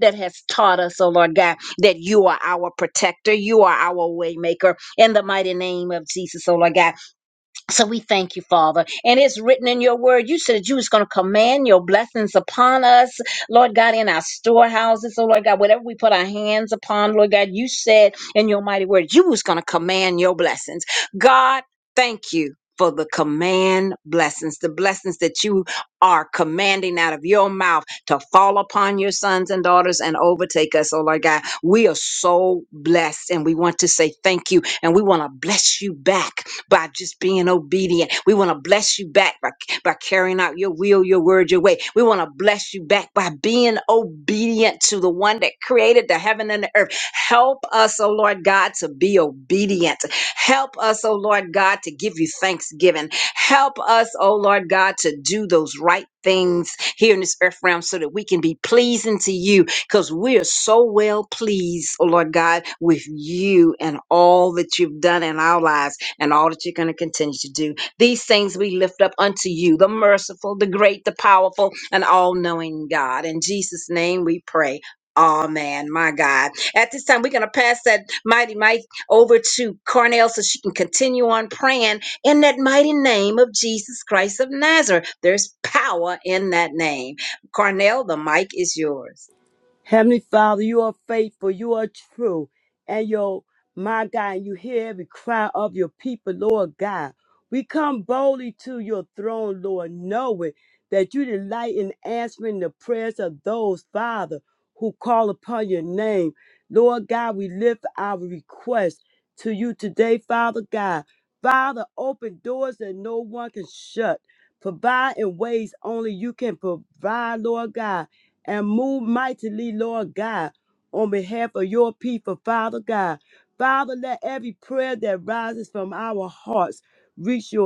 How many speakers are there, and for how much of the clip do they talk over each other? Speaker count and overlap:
2, no overlap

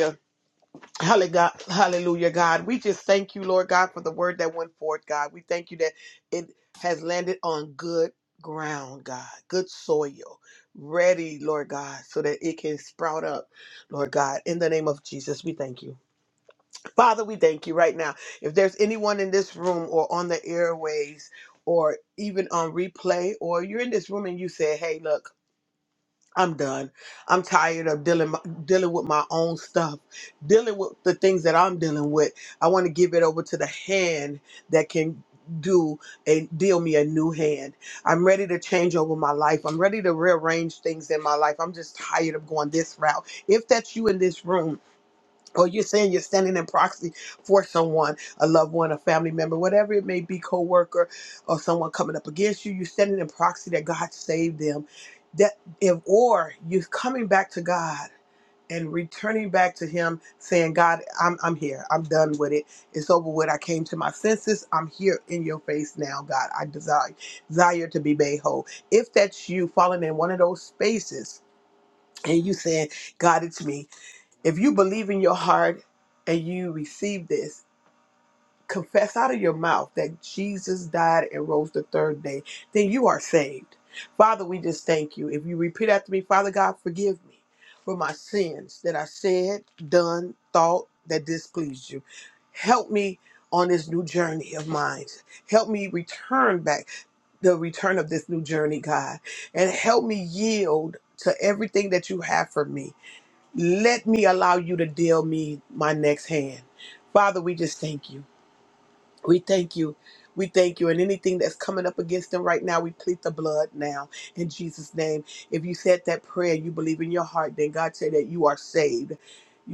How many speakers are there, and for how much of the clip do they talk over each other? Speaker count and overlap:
1, no overlap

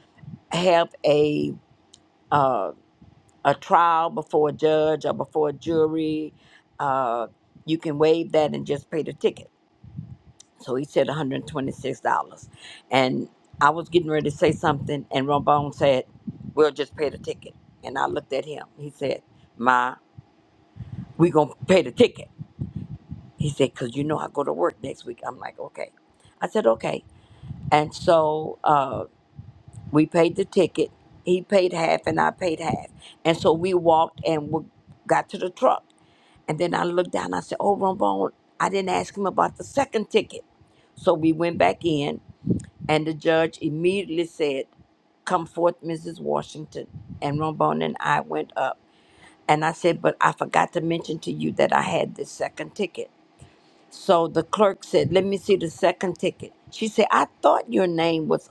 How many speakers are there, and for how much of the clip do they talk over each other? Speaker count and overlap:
1, no overlap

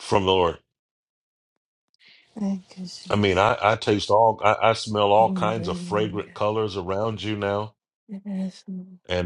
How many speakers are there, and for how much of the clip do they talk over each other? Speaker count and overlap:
2, about 9%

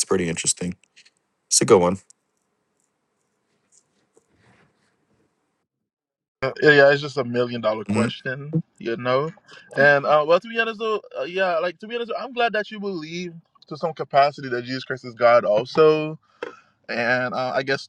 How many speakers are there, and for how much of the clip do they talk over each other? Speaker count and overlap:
2, about 1%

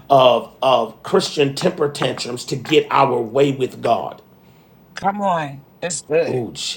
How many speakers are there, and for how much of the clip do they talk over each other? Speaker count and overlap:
2, about 2%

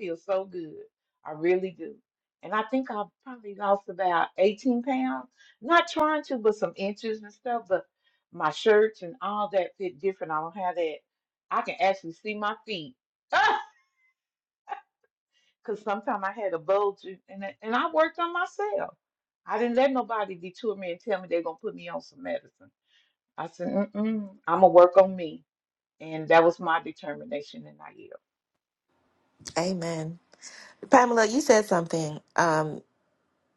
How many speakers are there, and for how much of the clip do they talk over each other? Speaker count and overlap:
2, no overlap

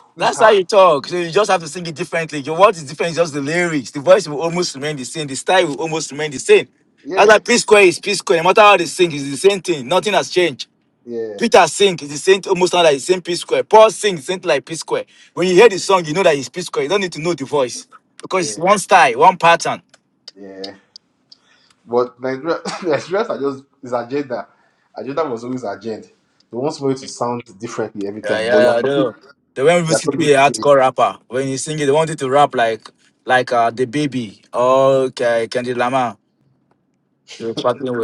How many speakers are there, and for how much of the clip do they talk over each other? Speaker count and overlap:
2, about 7%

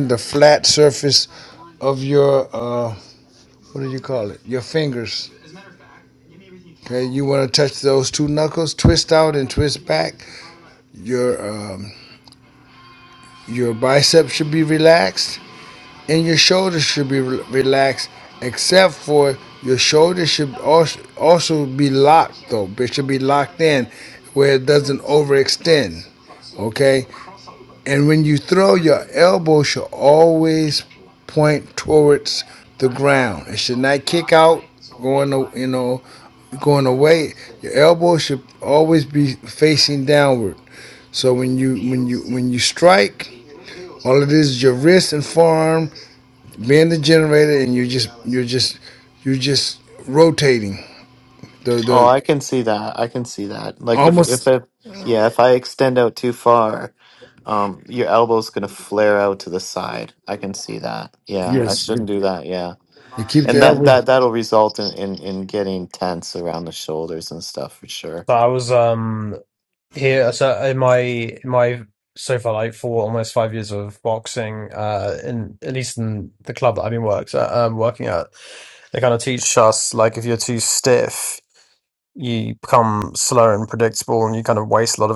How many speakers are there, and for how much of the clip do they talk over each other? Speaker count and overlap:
3, about 1%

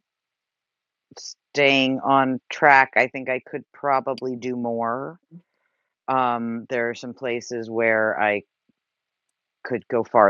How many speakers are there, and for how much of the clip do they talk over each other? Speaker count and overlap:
1, no overlap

